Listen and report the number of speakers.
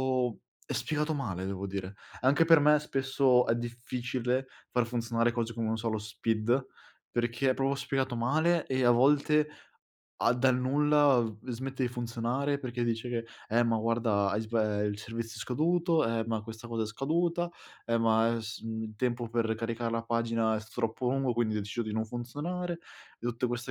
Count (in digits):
1